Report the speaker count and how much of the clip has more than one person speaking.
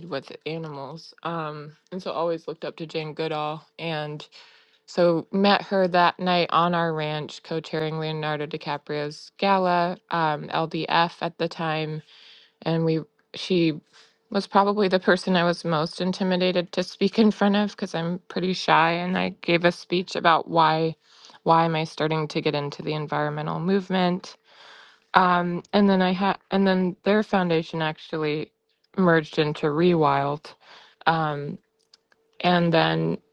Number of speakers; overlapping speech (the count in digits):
1, no overlap